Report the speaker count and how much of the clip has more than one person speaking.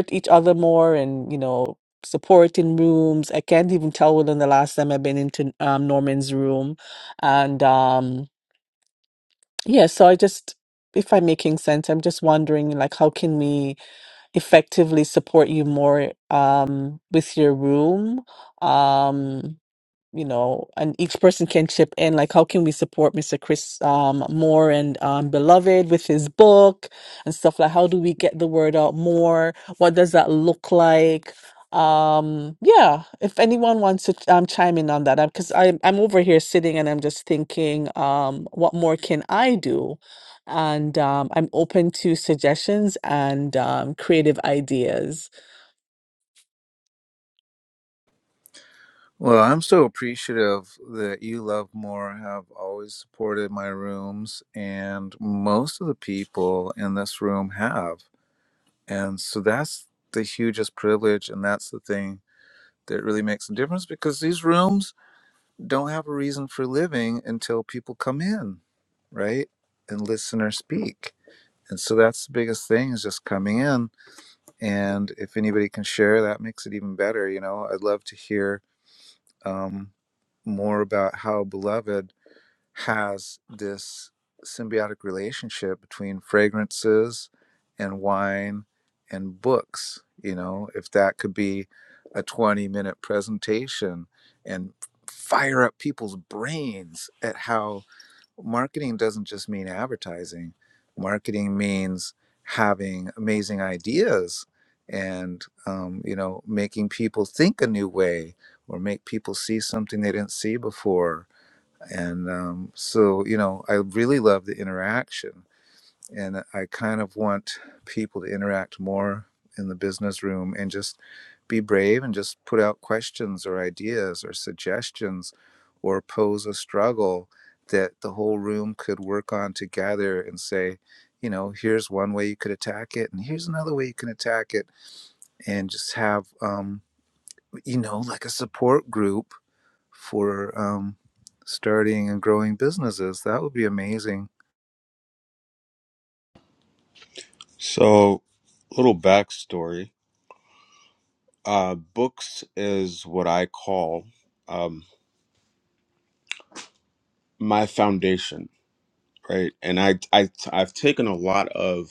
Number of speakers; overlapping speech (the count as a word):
three, no overlap